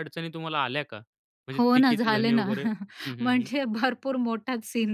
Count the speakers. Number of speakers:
2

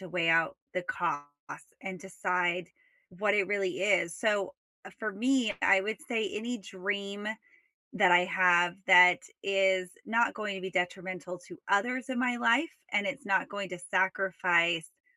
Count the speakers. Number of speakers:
1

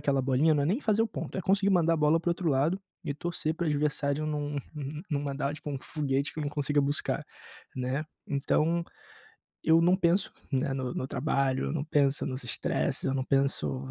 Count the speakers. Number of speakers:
1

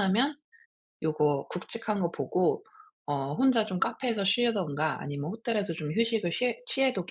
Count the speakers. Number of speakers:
1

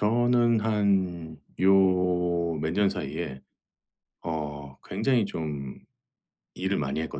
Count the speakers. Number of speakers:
1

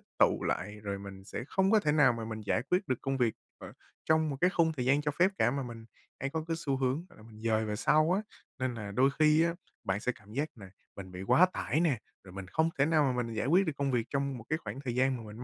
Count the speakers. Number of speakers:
1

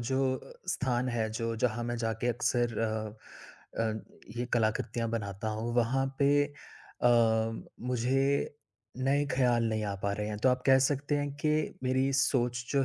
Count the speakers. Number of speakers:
1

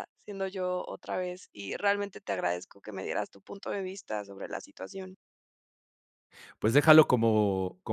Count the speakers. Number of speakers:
2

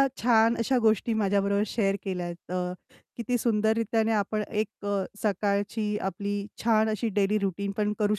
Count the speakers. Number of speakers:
1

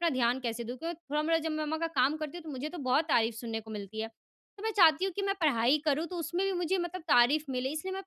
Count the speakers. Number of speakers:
1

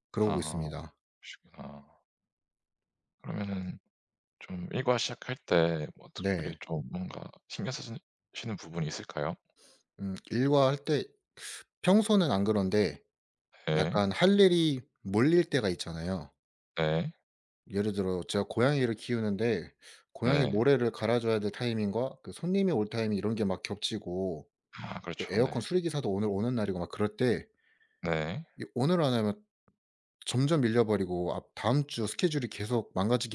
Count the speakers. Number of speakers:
2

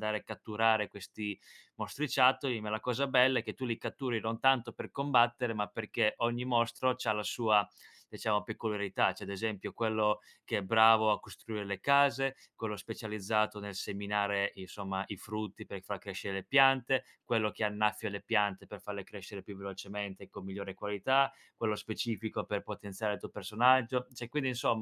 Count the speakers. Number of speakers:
1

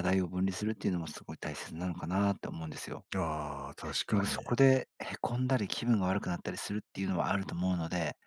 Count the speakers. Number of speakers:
2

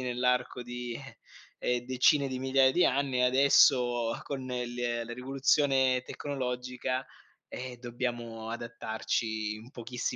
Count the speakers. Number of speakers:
1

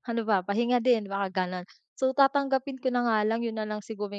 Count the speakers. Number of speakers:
1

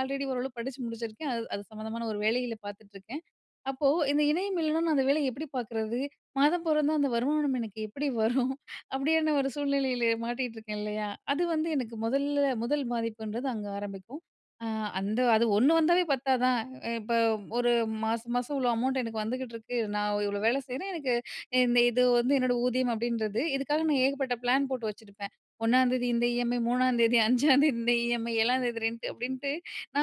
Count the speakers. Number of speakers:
1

